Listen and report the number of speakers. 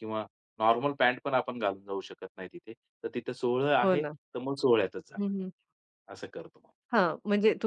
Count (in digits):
2